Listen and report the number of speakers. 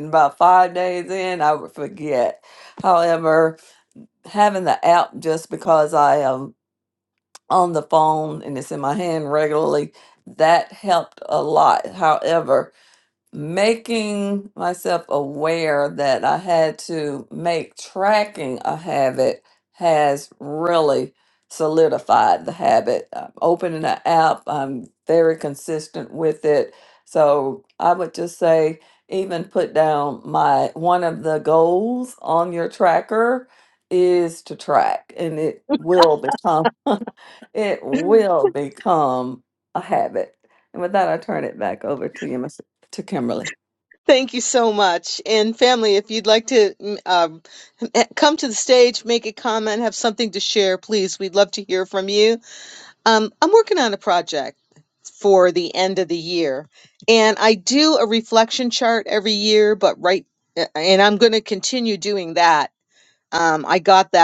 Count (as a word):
two